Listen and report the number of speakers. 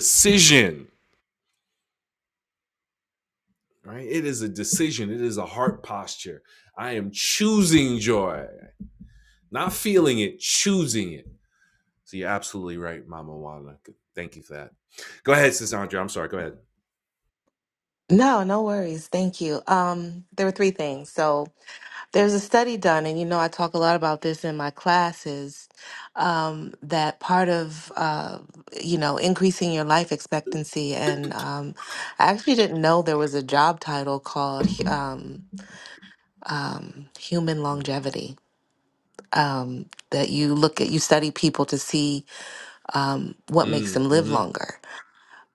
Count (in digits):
2